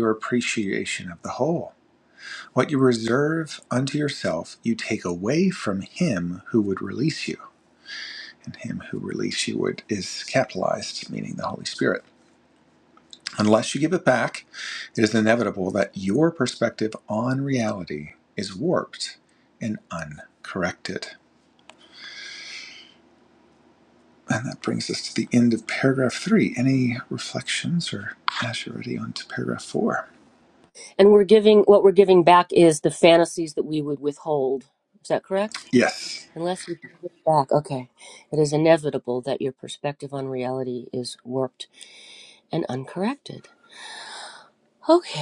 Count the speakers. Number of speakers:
two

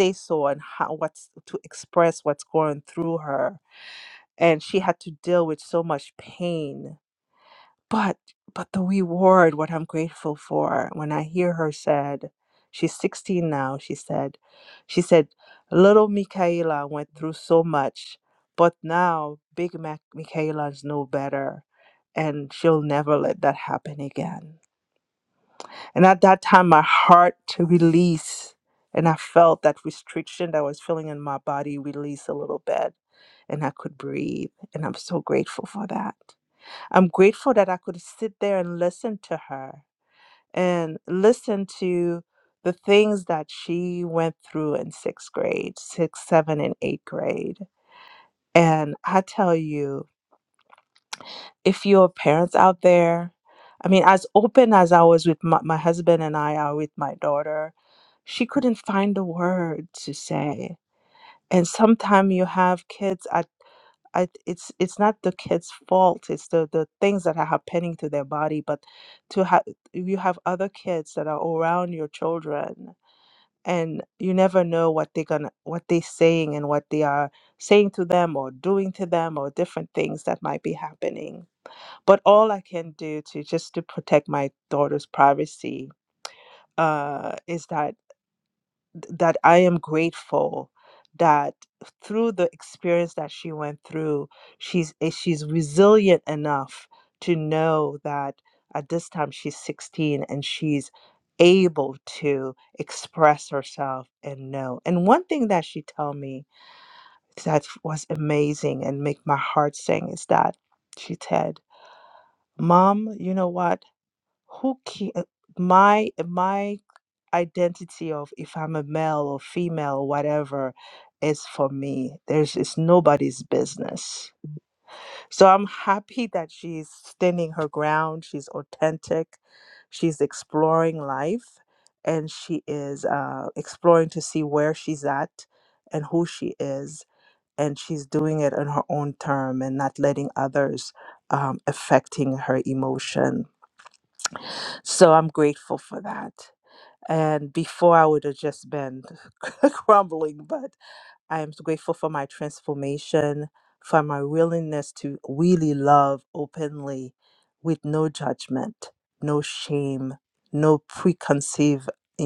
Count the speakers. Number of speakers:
one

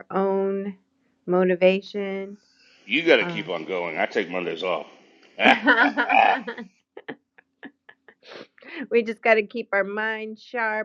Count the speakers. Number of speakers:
two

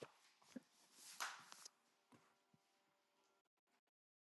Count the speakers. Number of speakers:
zero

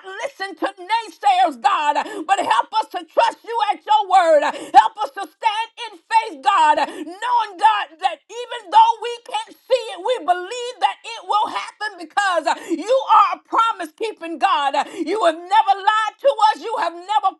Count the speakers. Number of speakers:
one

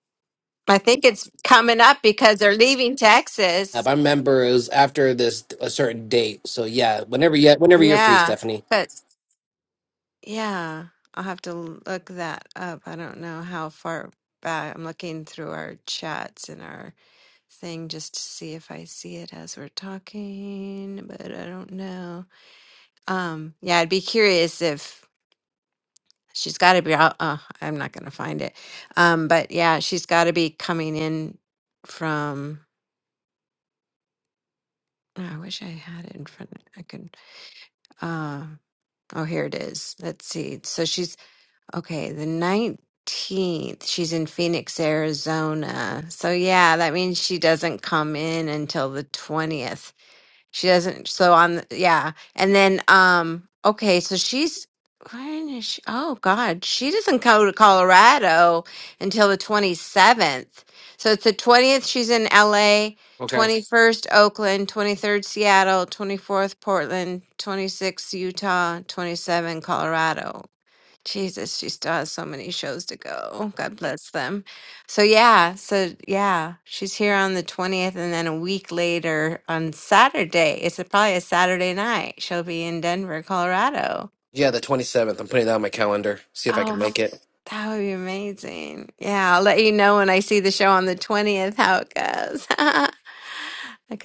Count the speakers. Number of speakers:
two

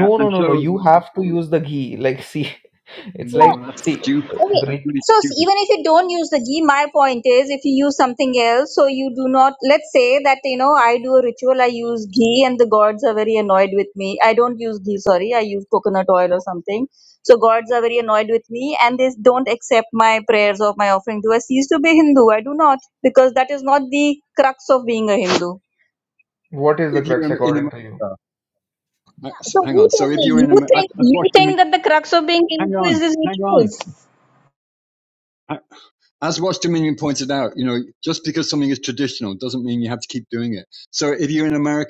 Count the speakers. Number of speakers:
three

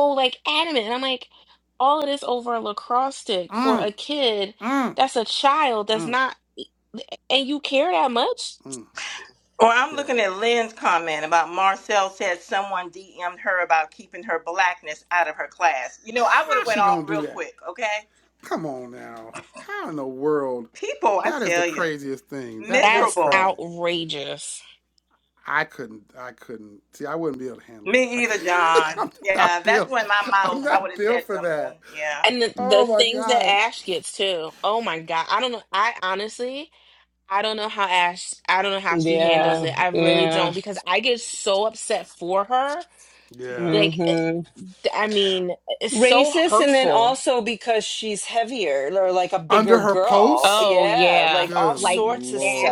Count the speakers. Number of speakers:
four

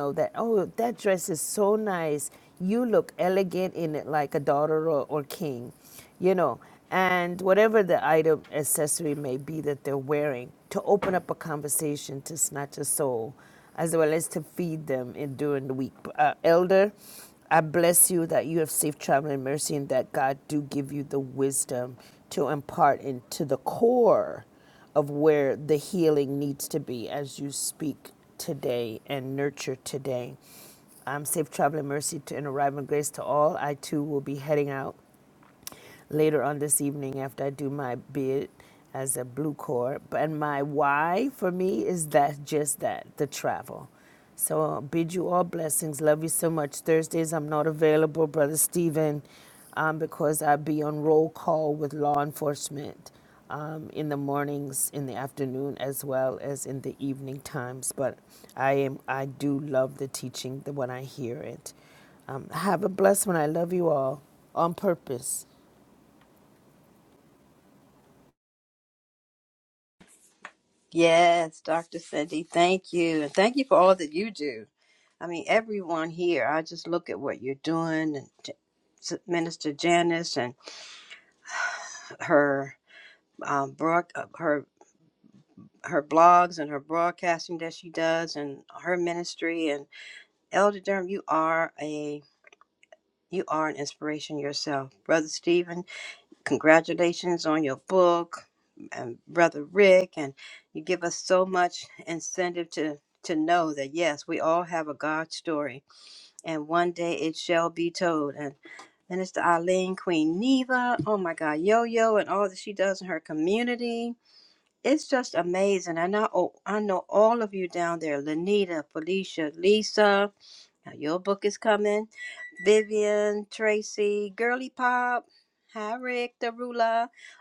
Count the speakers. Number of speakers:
two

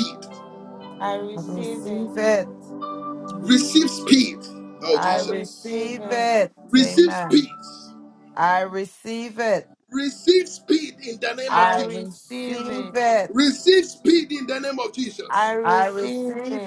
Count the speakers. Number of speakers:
three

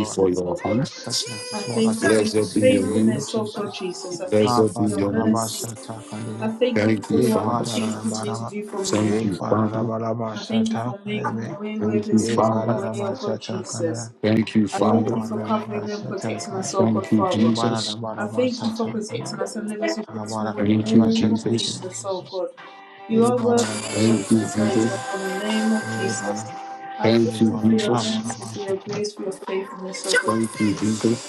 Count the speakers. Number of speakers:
three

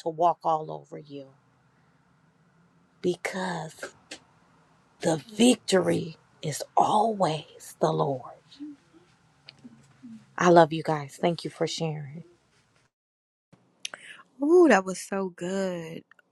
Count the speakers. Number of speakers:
two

